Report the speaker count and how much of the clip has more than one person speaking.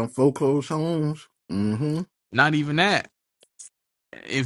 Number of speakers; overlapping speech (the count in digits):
2, no overlap